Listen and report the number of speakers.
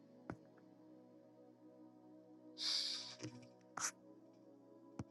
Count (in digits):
0